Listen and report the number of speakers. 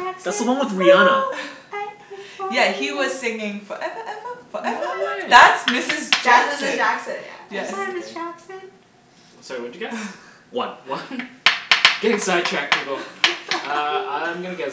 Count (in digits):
4